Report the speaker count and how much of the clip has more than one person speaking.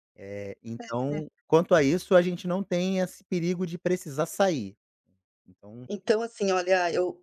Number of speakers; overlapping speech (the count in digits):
2, no overlap